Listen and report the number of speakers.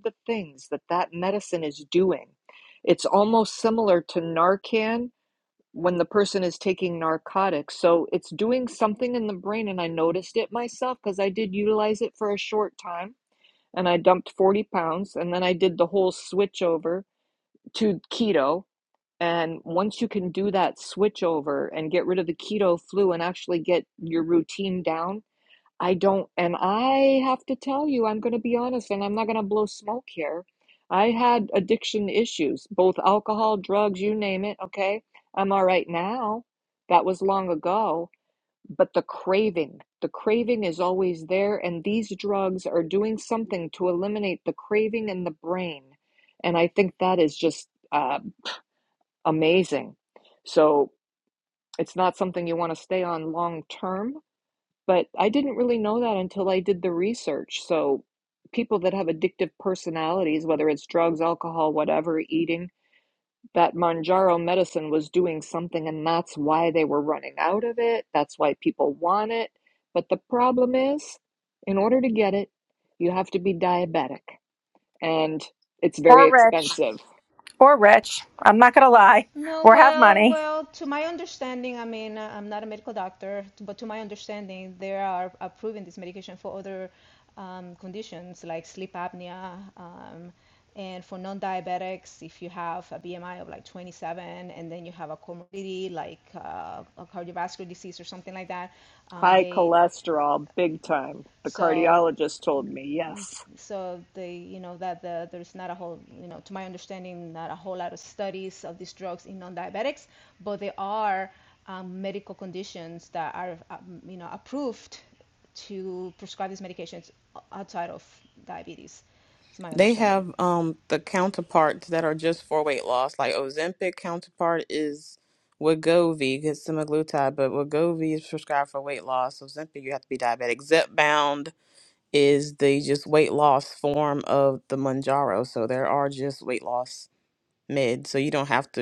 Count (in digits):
4